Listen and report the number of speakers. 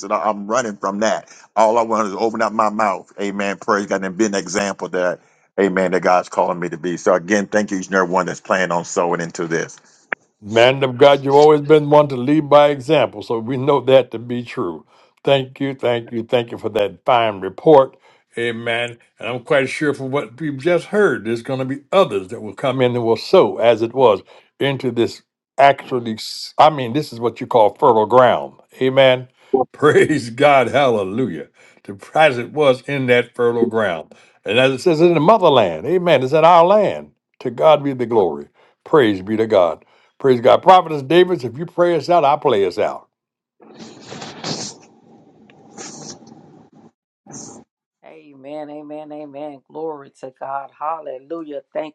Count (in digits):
3